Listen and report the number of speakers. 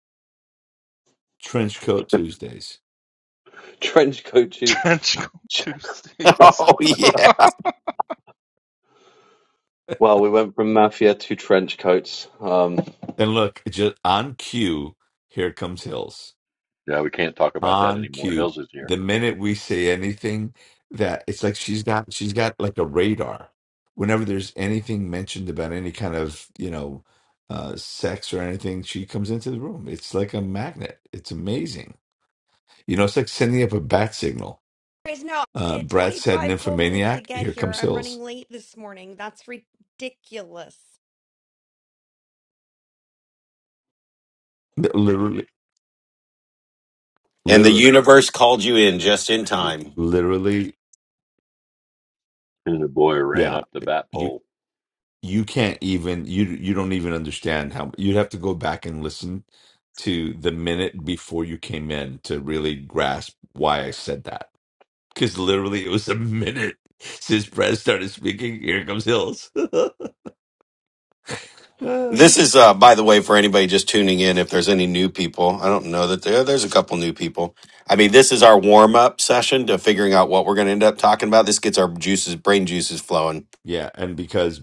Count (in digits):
6